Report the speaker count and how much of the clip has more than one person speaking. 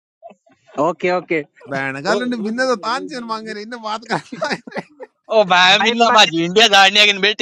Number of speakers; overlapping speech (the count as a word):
three, about 21%